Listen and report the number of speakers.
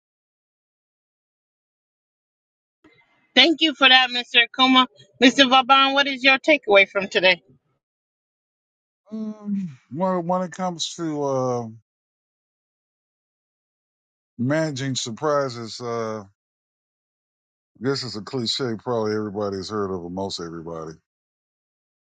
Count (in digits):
2